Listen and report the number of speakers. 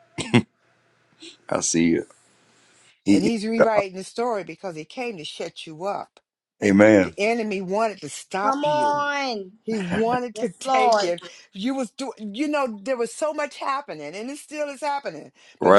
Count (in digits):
3